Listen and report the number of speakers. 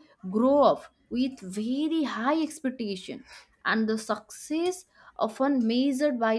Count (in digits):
1